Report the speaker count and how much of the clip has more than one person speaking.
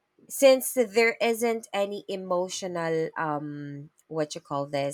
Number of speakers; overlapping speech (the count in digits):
1, no overlap